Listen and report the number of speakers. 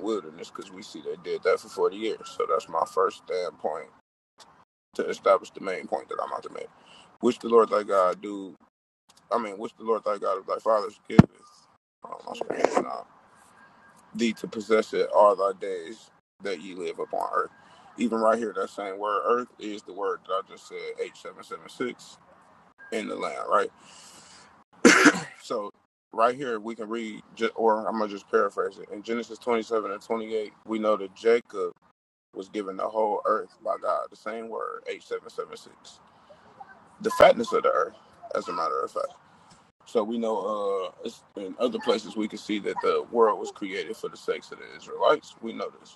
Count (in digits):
1